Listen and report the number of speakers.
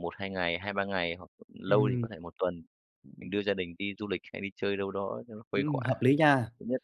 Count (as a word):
two